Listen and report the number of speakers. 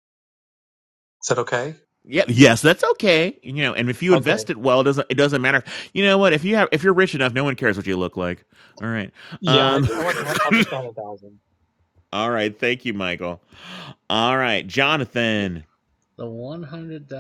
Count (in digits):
3